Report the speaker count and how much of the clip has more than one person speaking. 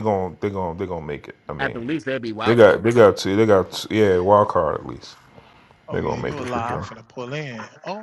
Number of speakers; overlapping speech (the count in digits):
3, about 17%